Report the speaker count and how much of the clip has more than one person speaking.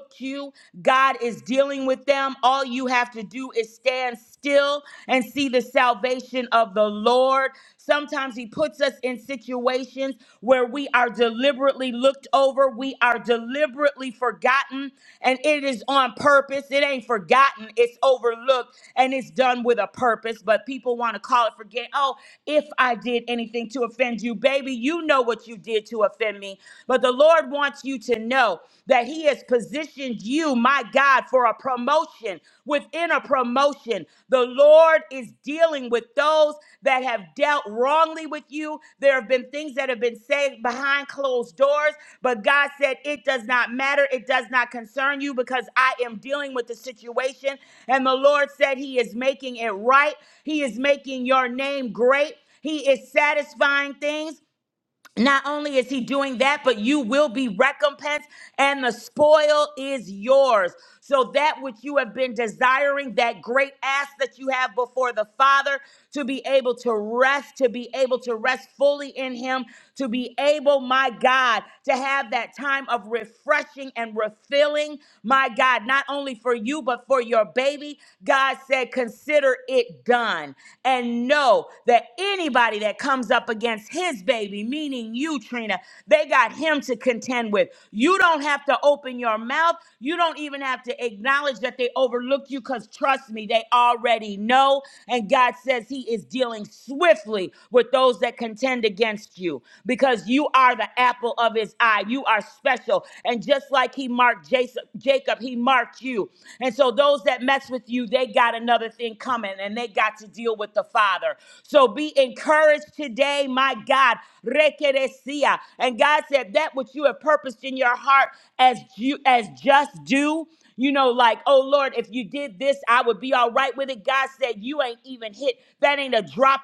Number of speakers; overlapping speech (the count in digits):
1, no overlap